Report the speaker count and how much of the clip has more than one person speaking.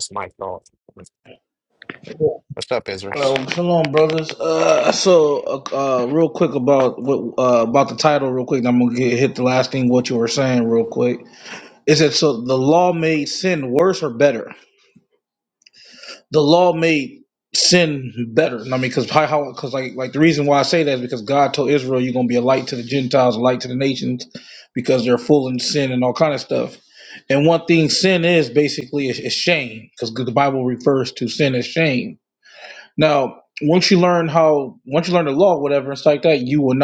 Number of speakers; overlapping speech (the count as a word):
two, under 1%